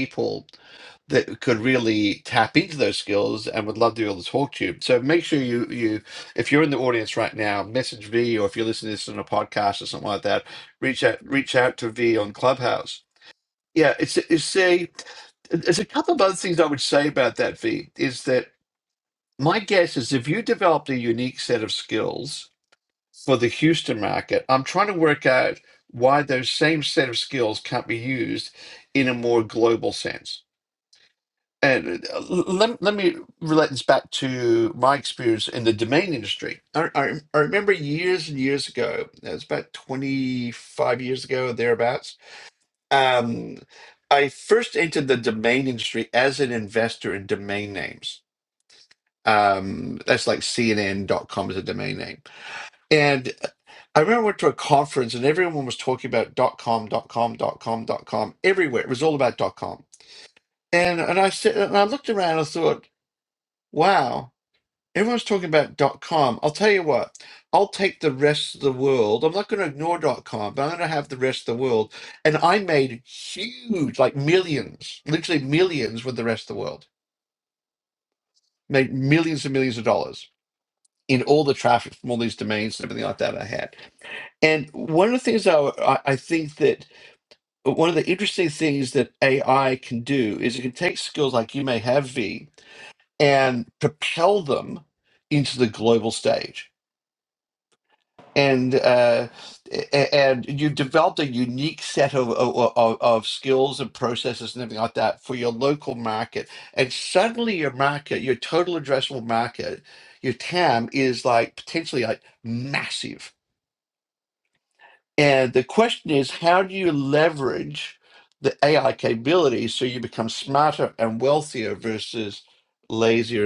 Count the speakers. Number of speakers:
1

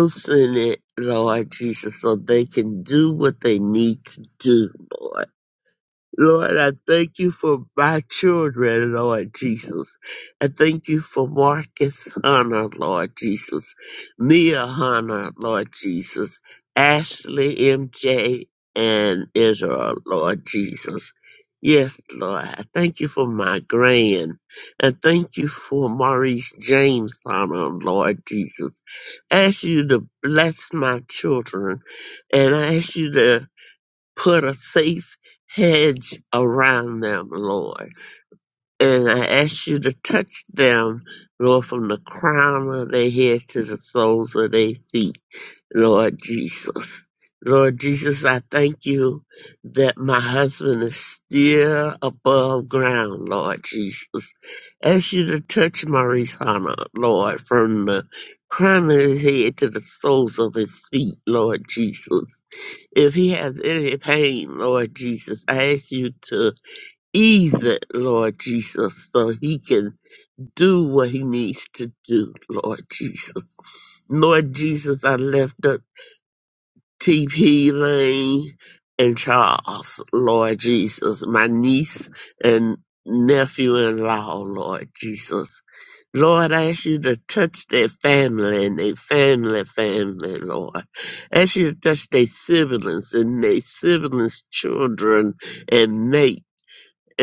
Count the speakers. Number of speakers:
1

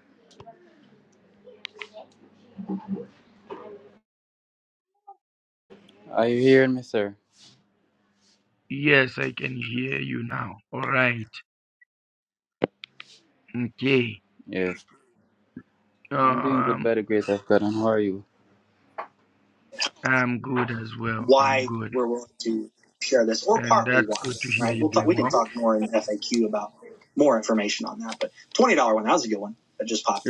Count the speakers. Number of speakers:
3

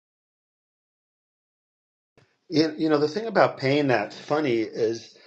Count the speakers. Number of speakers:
1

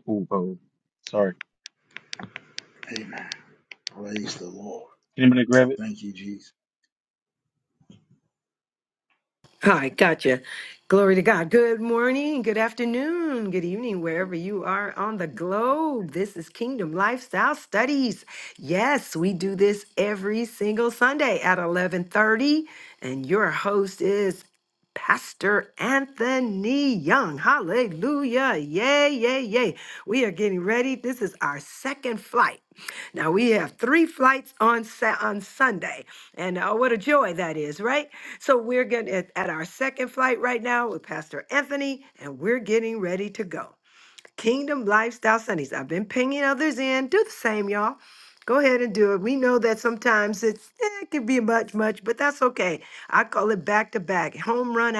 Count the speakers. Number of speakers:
3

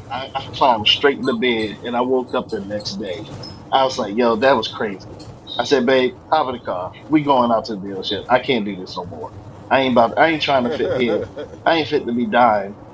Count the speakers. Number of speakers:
1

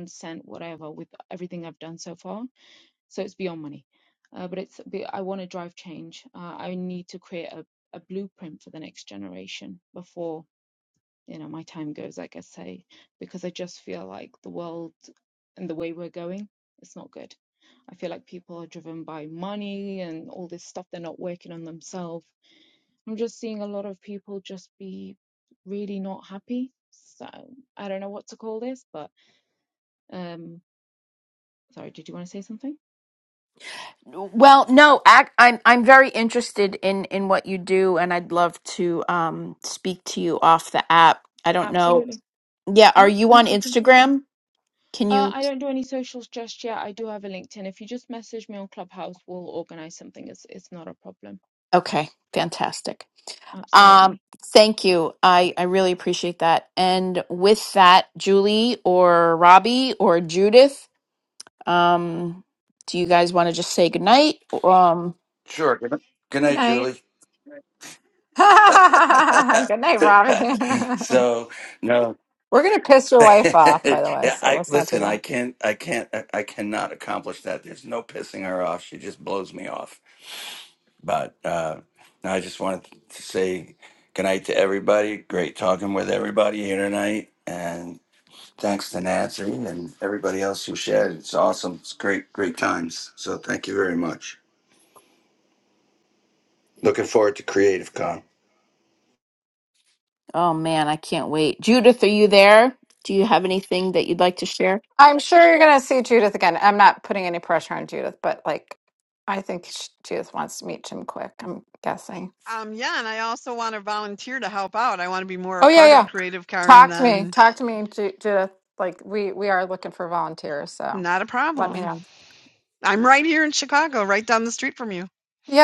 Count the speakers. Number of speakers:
5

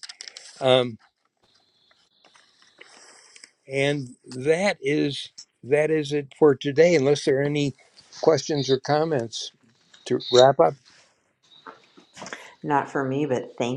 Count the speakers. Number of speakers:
2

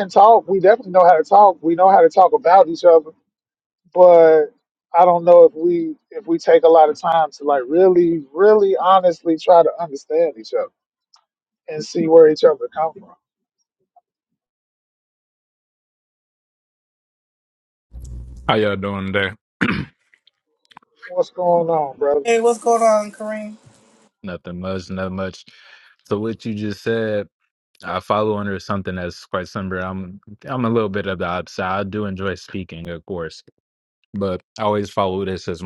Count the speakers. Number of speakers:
3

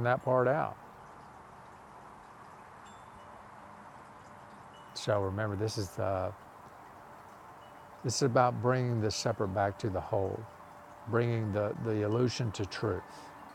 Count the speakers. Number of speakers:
1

